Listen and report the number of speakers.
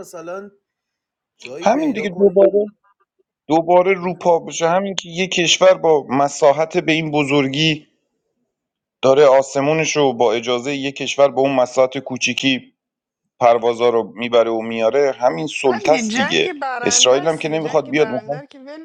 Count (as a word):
three